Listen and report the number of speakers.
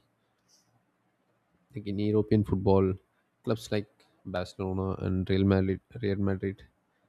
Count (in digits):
1